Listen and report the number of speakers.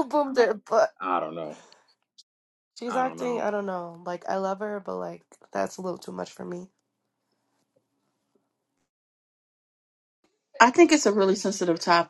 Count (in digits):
3